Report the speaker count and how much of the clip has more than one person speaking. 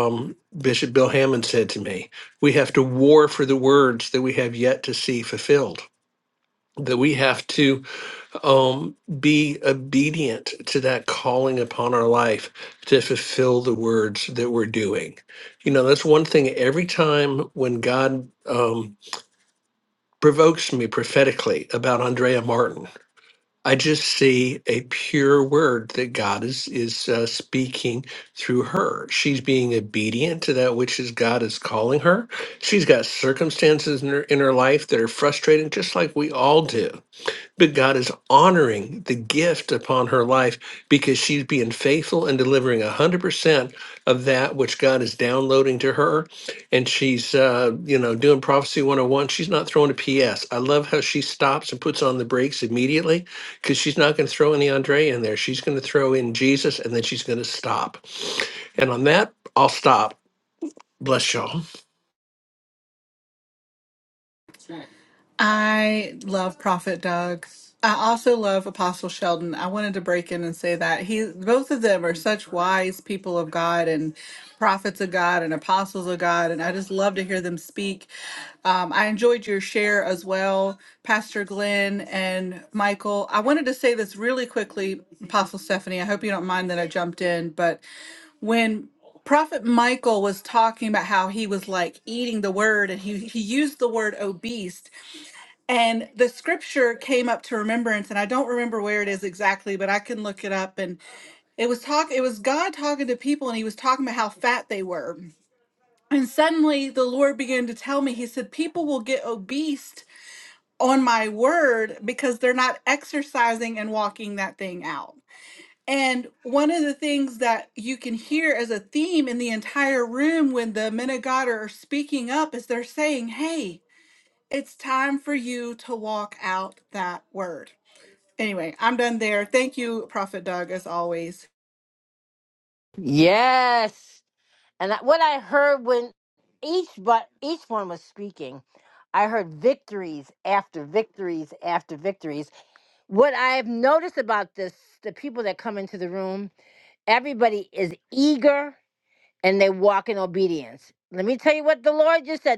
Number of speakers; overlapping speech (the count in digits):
3, no overlap